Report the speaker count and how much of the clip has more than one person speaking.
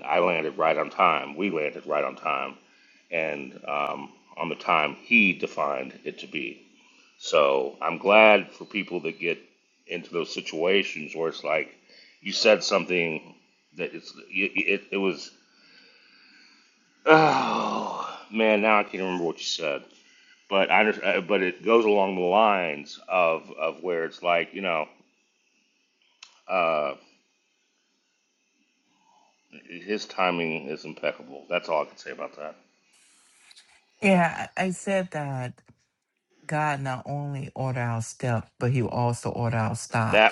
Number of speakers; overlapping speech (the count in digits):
2, under 1%